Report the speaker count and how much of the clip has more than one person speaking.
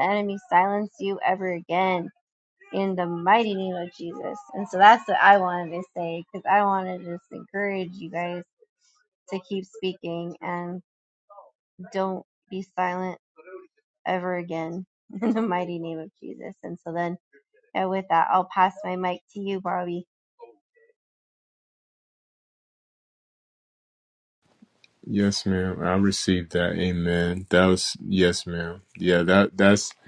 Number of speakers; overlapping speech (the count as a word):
two, no overlap